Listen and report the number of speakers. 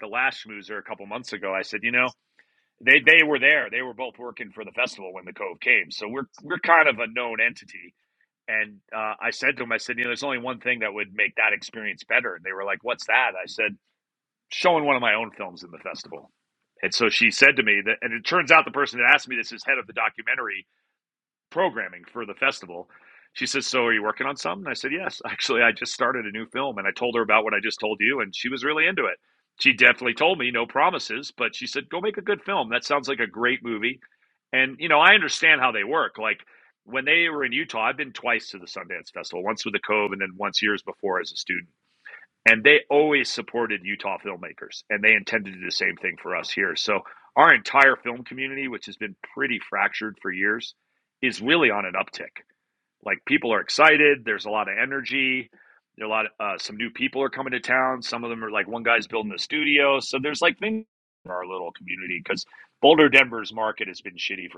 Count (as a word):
one